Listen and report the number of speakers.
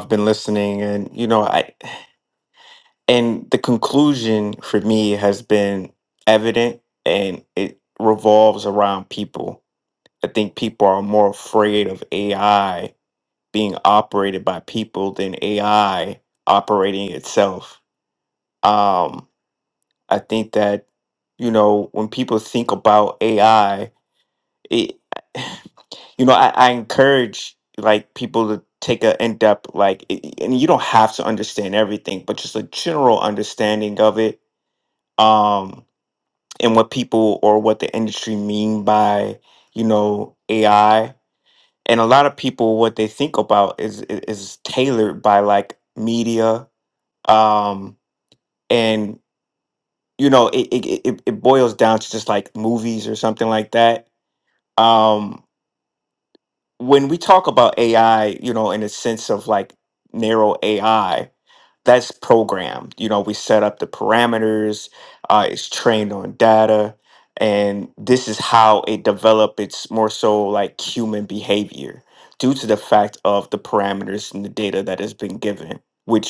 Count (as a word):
one